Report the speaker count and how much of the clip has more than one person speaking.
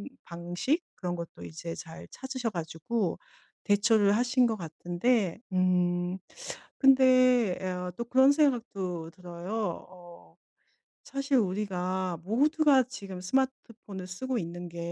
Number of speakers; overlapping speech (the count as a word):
one, no overlap